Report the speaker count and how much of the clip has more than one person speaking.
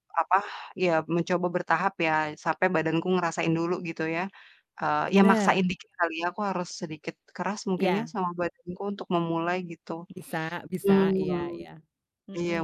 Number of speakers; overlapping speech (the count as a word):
two, about 15%